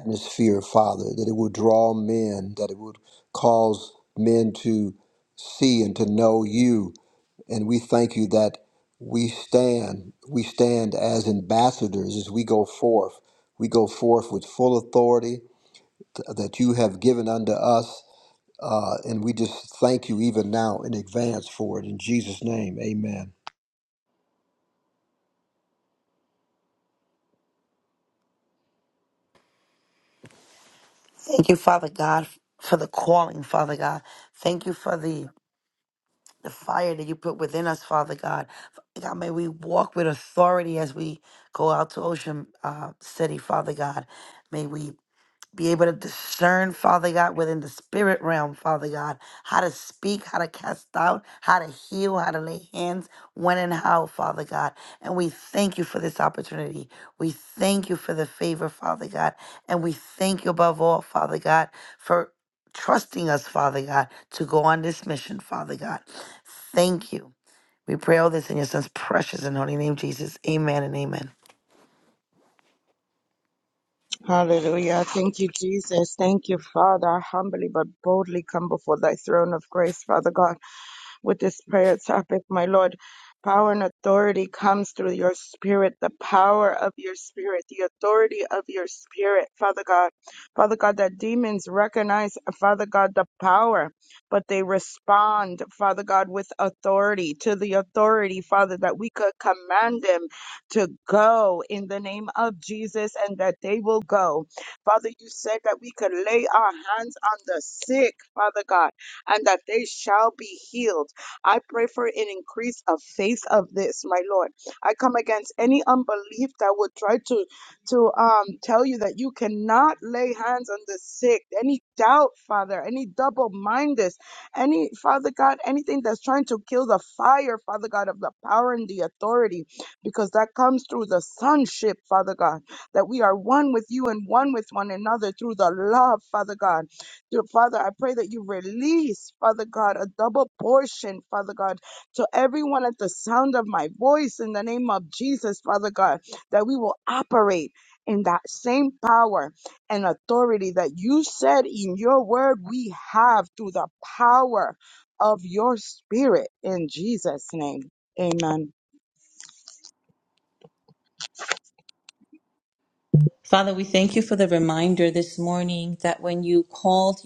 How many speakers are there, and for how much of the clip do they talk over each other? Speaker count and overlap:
four, no overlap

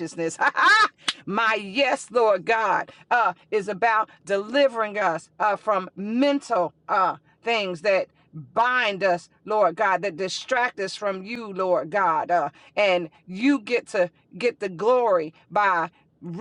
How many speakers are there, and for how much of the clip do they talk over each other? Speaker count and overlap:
one, no overlap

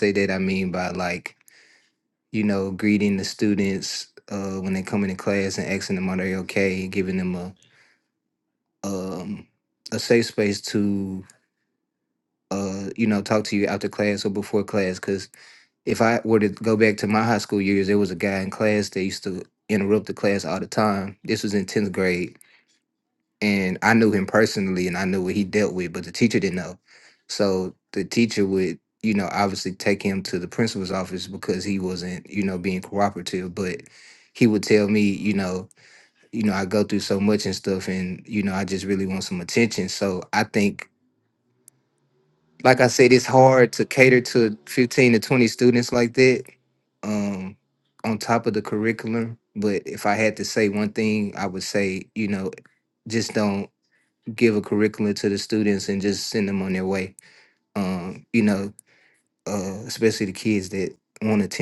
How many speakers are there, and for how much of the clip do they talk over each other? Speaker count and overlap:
one, no overlap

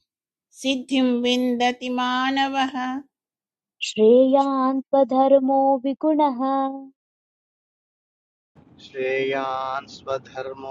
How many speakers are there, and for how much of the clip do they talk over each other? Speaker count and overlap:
three, no overlap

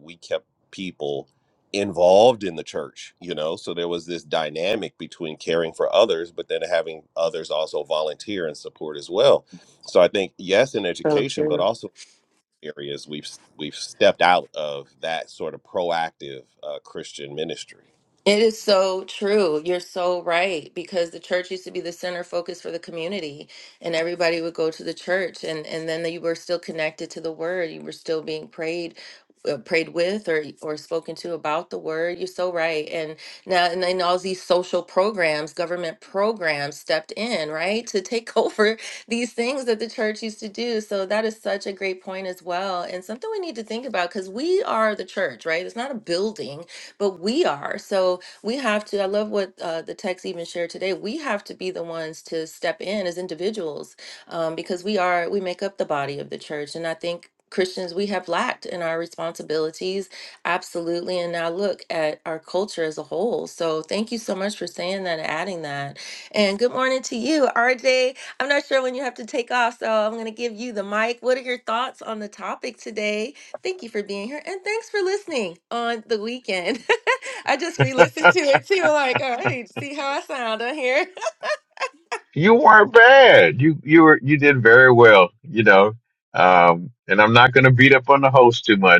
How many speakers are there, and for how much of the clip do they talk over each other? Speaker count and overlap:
three, about 1%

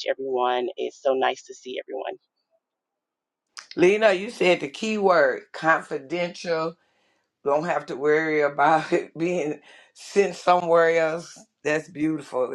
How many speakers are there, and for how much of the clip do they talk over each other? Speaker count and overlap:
two, no overlap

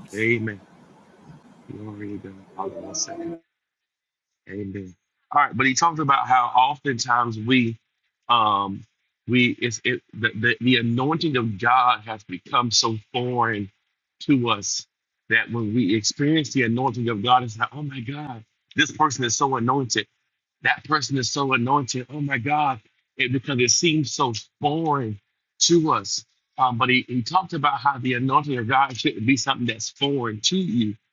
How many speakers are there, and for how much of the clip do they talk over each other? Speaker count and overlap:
one, no overlap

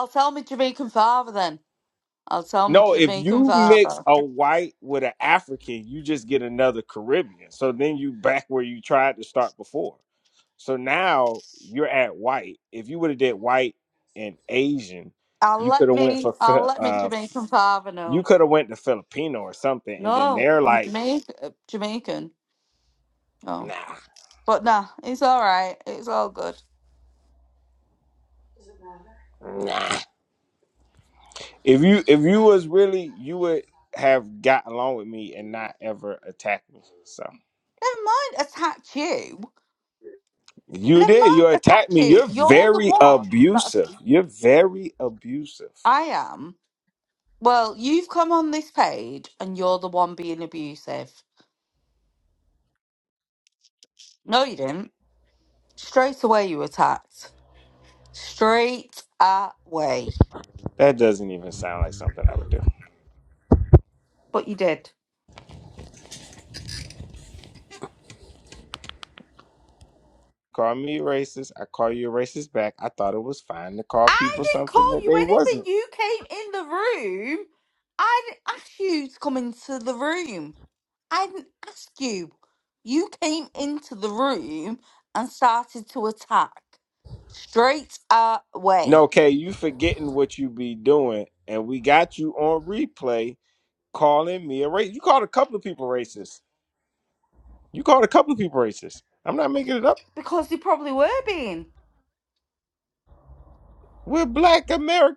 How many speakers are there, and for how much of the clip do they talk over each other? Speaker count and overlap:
two, about 8%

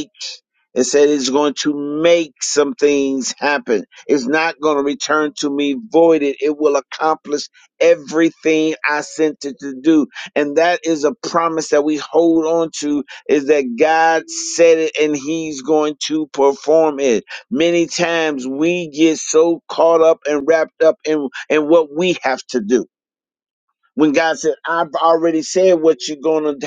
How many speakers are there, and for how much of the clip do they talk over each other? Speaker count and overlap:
one, no overlap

